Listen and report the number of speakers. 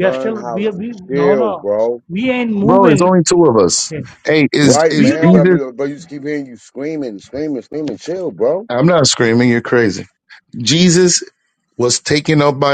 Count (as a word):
three